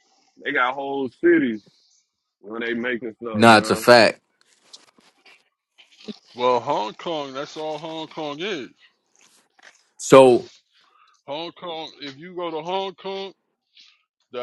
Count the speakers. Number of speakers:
3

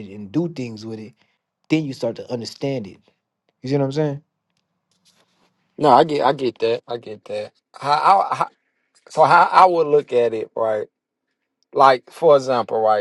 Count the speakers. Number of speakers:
2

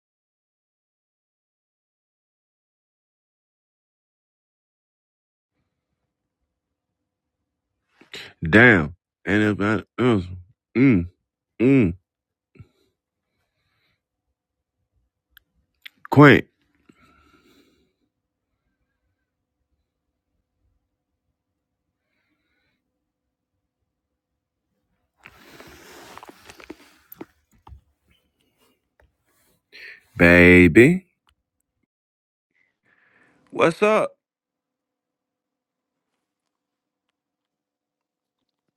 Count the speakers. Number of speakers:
1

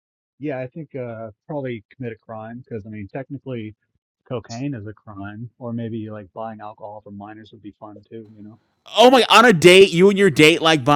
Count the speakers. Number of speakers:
2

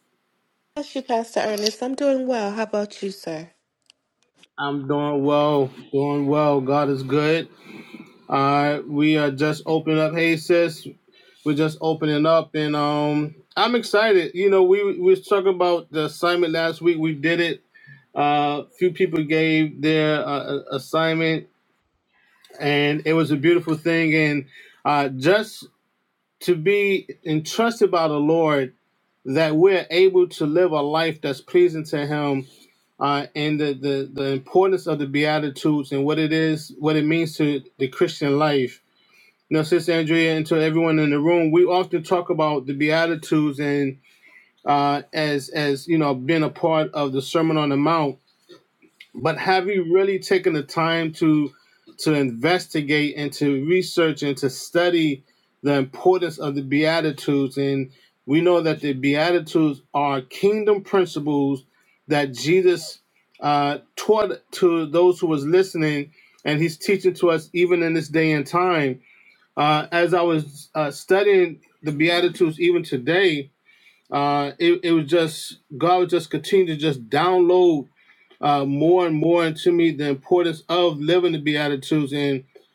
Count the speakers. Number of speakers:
2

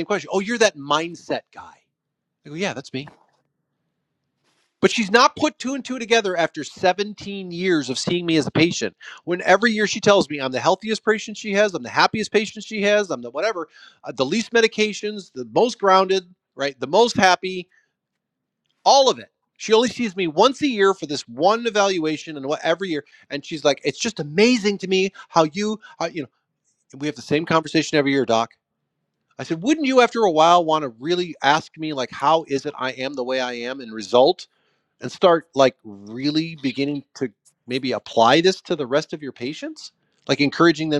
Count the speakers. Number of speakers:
1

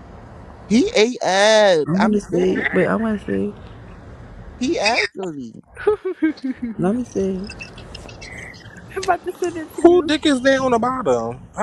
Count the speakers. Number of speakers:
4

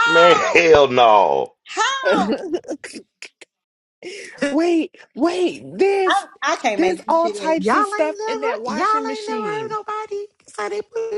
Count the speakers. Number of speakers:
4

